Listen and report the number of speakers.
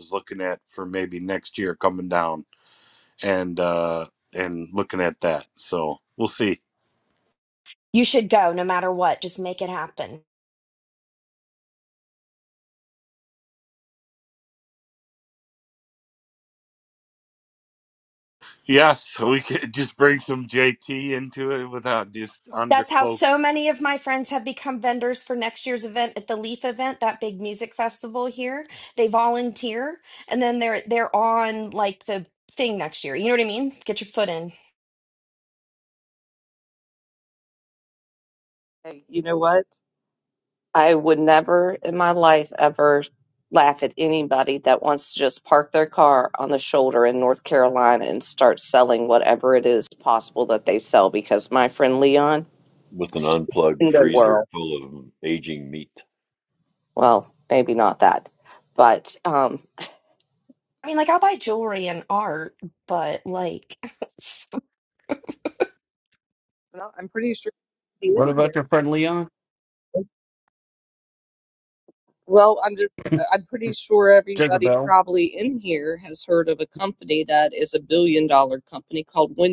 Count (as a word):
five